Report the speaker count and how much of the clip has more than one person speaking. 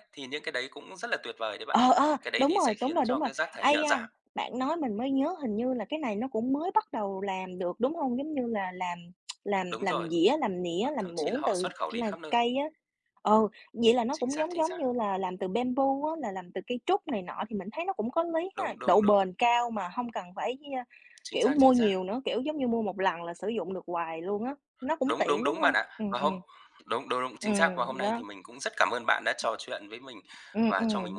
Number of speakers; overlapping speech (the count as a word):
two, about 27%